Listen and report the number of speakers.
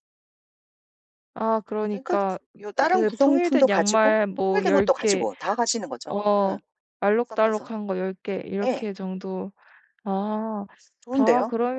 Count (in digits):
2